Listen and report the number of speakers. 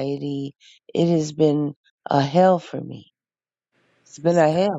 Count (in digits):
1